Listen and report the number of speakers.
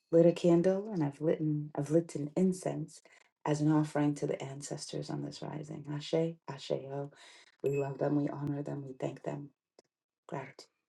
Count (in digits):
1